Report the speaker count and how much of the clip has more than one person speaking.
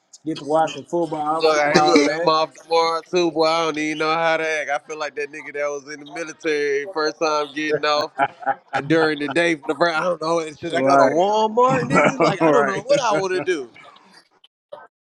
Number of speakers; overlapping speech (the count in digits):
2, about 17%